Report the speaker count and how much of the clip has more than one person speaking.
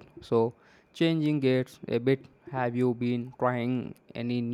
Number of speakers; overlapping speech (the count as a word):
one, no overlap